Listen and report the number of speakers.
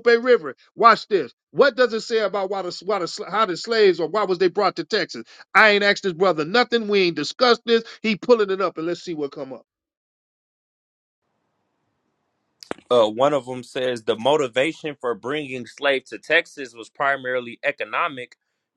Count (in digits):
2